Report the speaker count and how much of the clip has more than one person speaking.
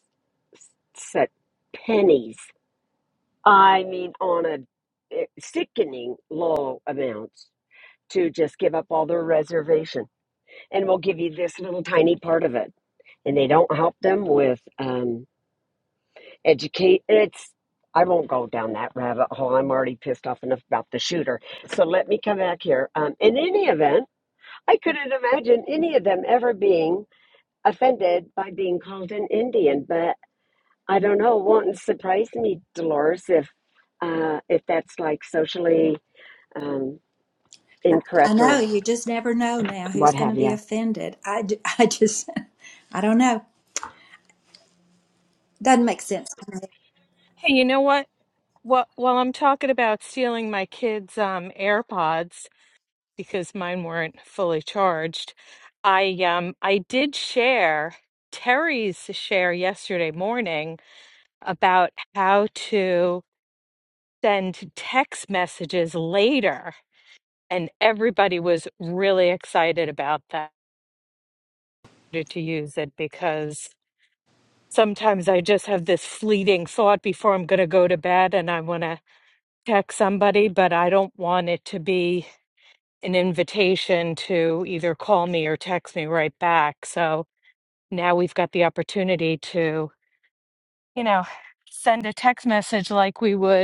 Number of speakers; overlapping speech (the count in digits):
3, about 1%